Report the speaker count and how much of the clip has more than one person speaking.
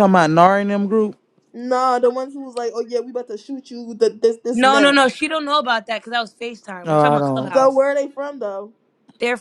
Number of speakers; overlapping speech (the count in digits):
3, about 13%